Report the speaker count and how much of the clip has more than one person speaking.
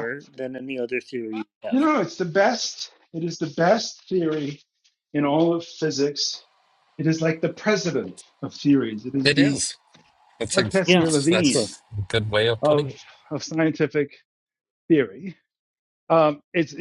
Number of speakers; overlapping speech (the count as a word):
three, about 9%